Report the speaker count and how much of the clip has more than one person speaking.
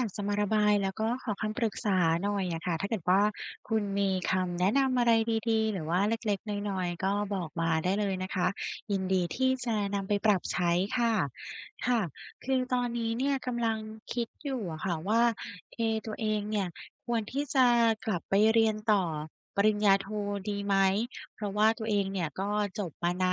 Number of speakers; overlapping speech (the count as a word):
one, no overlap